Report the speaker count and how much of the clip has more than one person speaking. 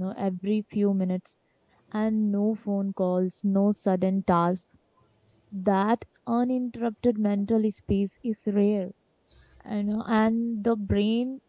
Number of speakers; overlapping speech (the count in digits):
1, no overlap